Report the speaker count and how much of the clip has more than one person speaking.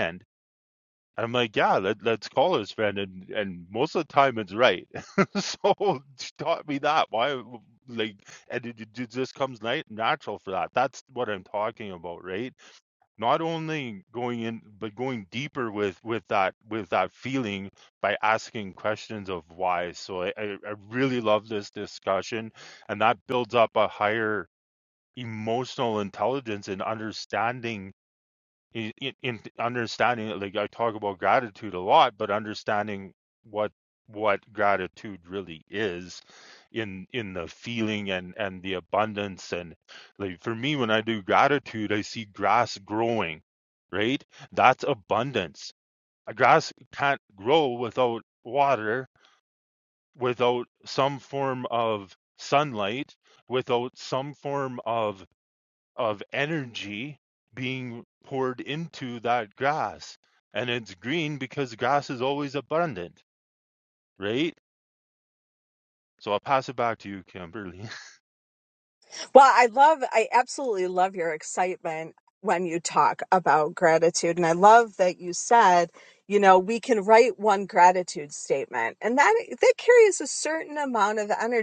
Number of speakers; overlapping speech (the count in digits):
2, no overlap